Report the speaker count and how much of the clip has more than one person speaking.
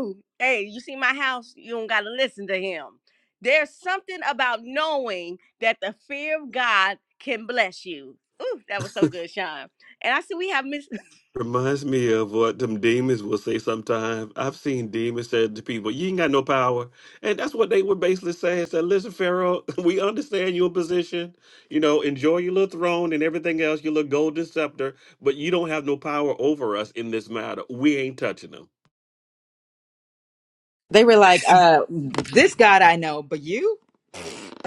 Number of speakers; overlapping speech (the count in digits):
3, no overlap